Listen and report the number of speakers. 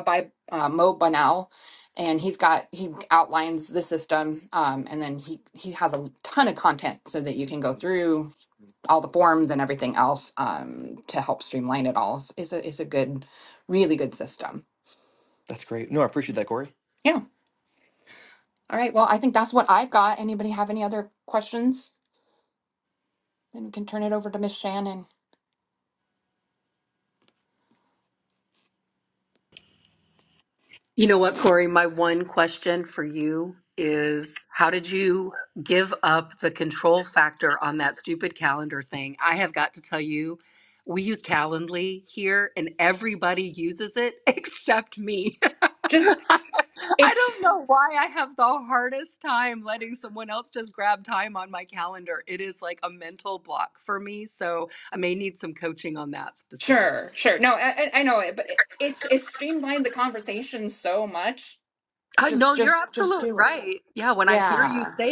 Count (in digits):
3